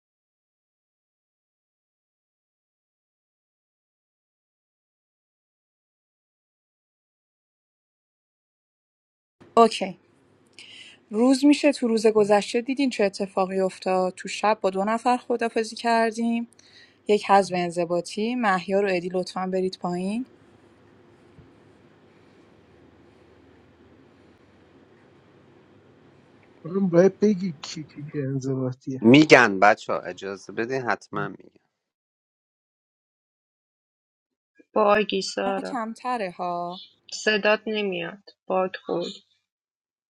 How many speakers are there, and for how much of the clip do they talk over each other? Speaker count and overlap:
4, about 1%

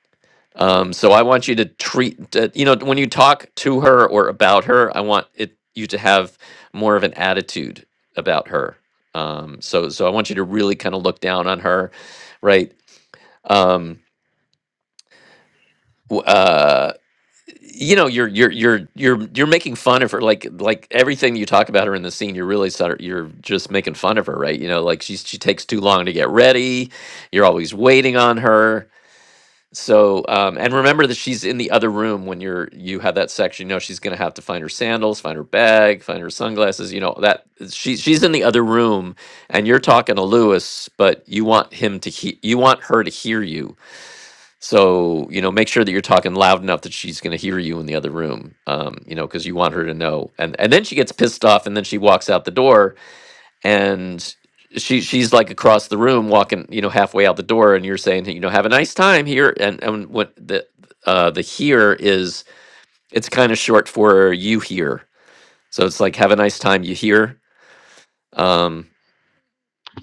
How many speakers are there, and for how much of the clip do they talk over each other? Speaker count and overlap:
1, no overlap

